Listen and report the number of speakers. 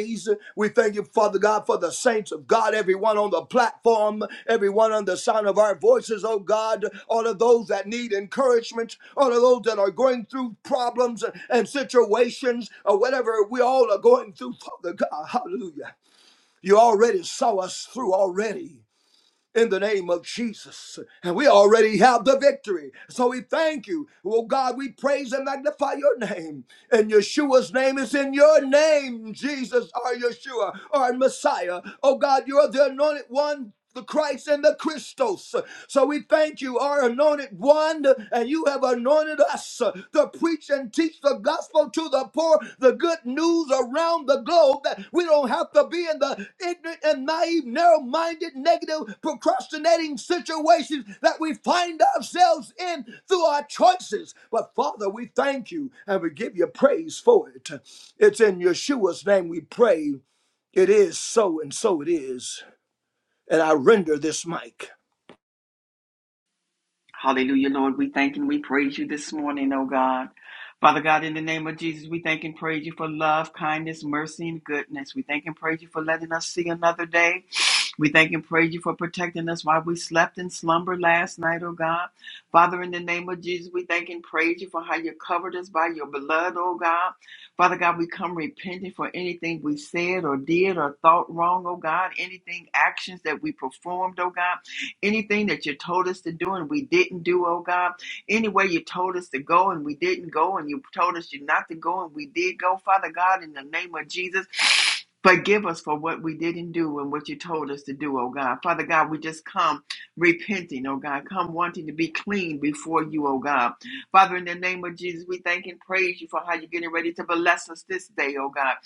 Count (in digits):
2